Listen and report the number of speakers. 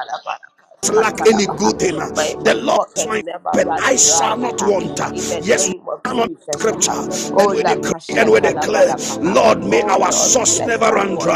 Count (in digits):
2